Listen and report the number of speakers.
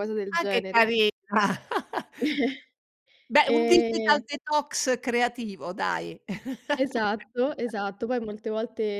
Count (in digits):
2